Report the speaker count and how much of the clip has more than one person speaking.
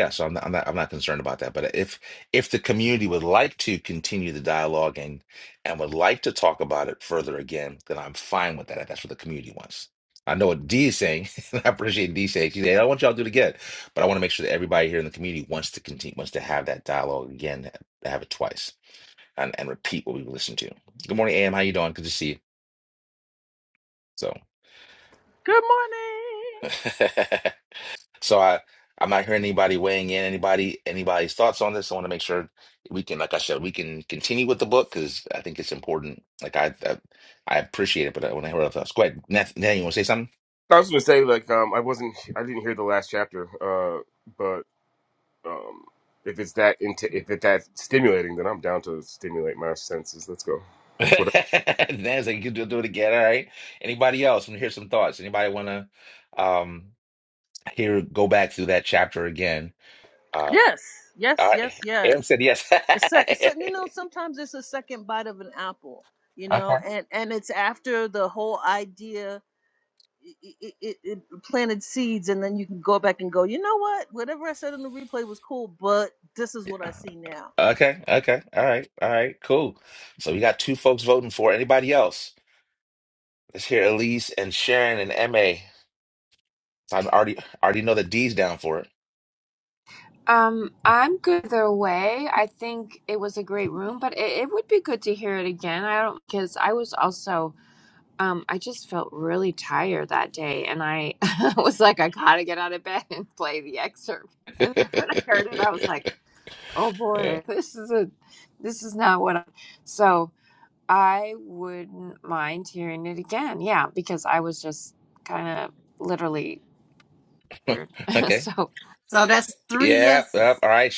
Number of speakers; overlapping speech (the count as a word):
five, about 3%